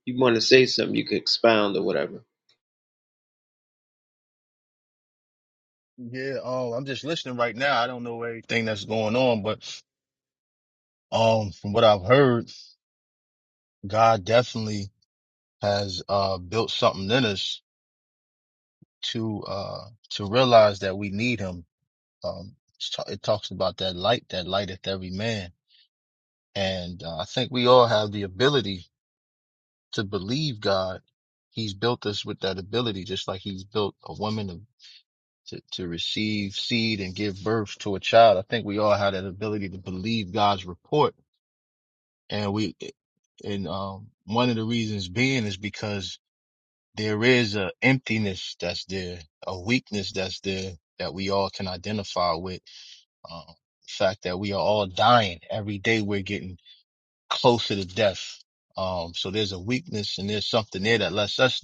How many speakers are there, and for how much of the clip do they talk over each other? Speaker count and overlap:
2, no overlap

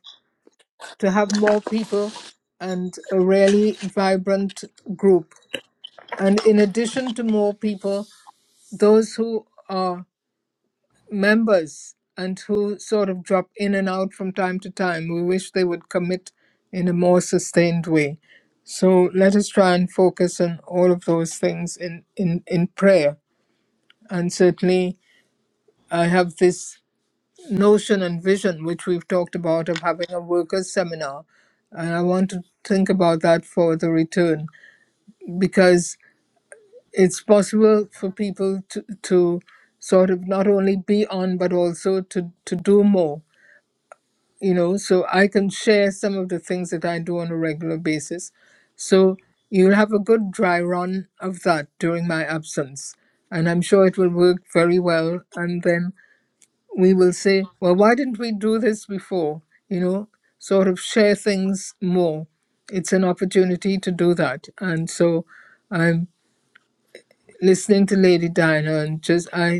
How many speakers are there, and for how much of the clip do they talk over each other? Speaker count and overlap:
1, no overlap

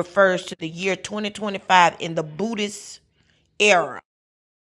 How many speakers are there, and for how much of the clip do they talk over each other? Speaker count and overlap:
1, no overlap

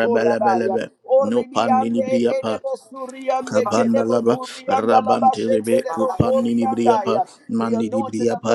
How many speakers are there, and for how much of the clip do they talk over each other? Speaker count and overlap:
2, about 74%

